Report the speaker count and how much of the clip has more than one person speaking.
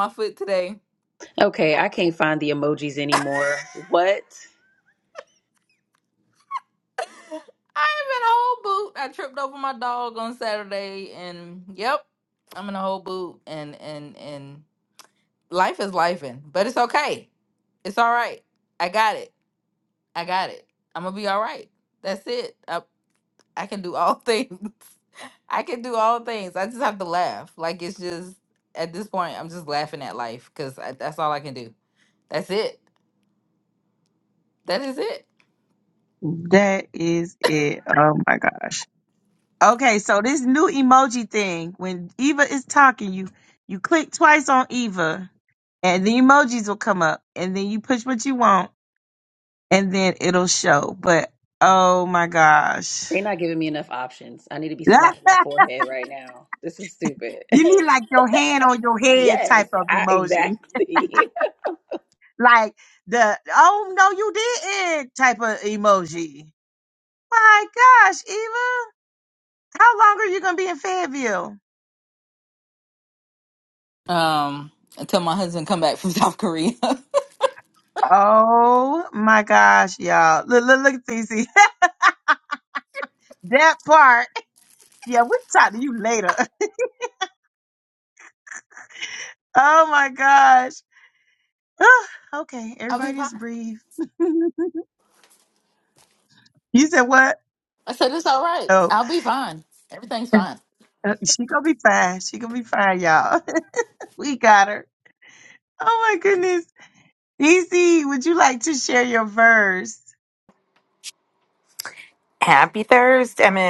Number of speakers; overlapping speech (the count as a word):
four, about 2%